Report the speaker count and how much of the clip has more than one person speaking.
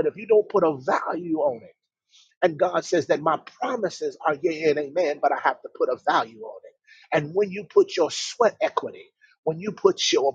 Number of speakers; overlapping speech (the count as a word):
one, no overlap